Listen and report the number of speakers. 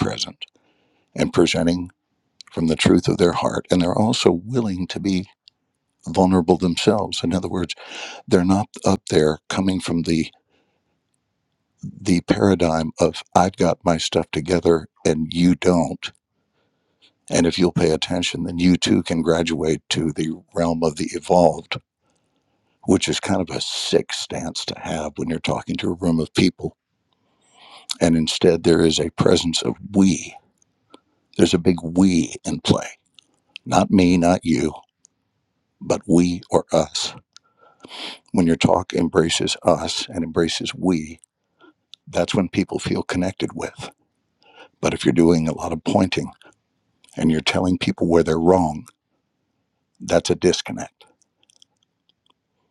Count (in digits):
1